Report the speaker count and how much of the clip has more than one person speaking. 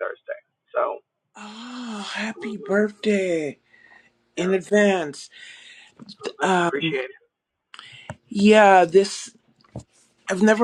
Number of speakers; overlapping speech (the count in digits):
2, about 11%